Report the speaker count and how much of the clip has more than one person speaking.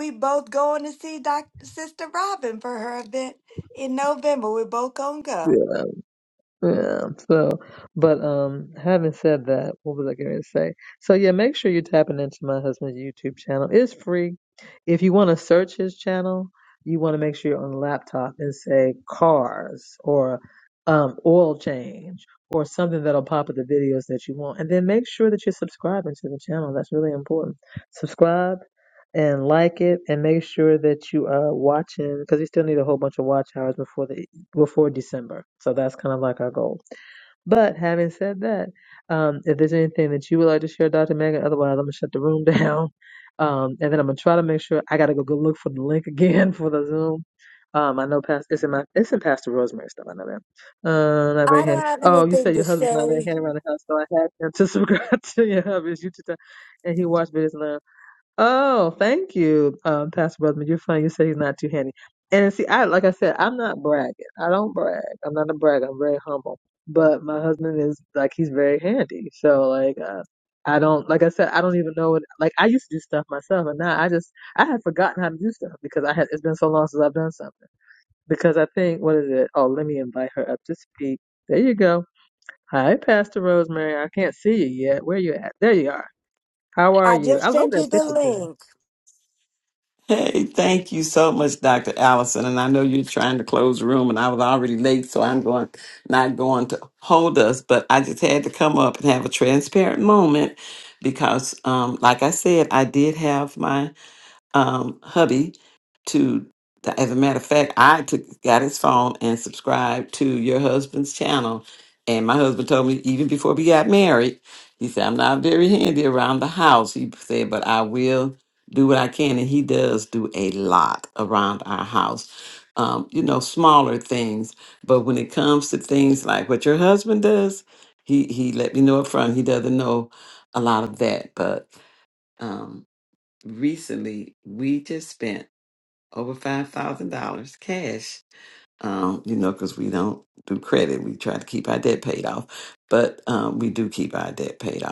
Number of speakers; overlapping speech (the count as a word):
three, about 2%